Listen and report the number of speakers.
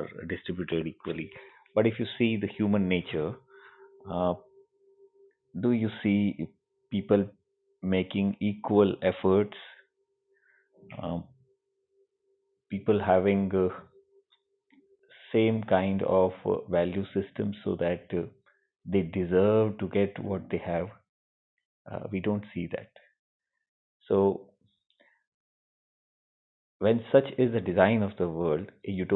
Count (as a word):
one